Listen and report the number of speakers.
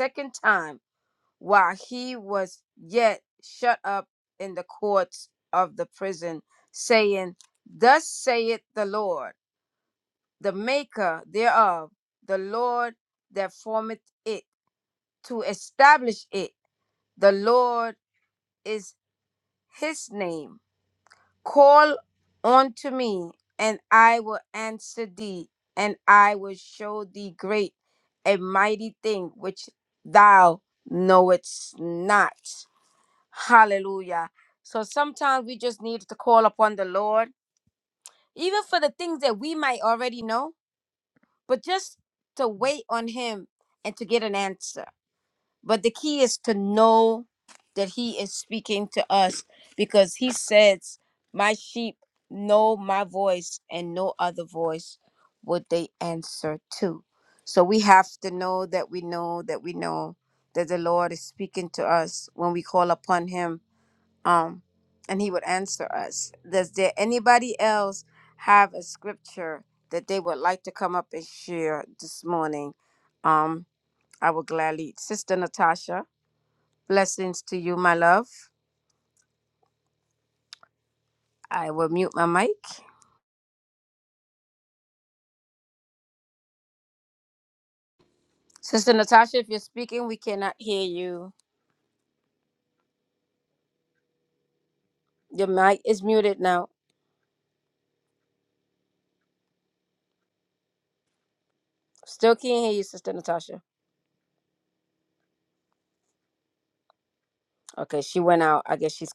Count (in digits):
1